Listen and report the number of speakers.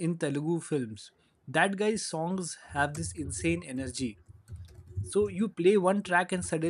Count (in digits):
1